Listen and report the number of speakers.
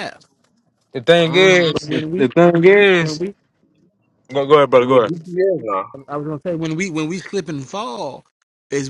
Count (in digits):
3